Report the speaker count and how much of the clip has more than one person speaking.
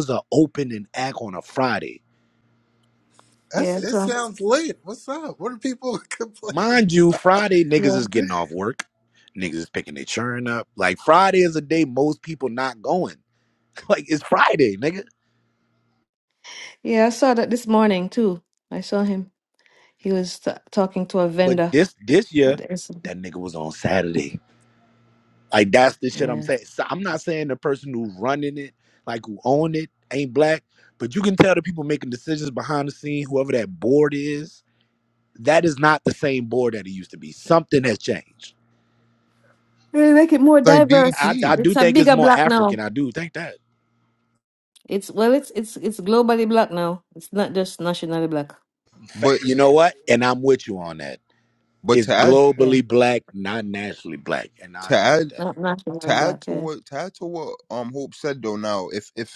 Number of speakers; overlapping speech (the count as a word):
four, about 10%